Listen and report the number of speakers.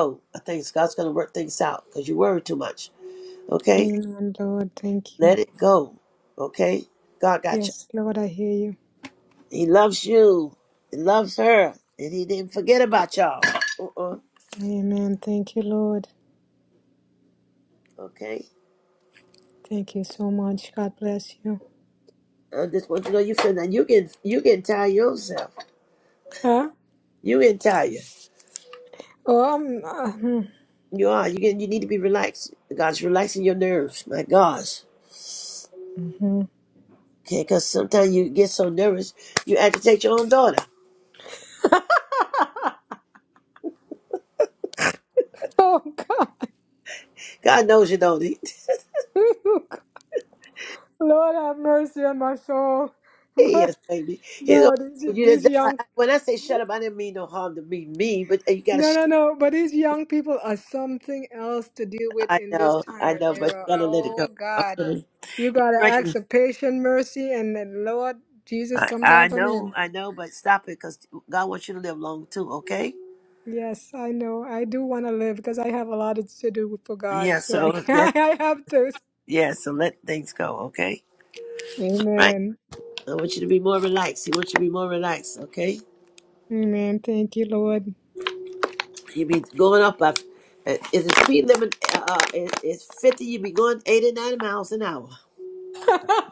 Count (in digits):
2